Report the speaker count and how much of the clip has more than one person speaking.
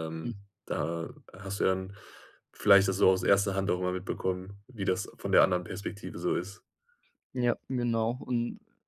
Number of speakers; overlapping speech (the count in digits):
2, about 1%